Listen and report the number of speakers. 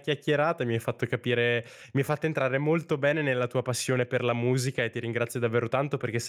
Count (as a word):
one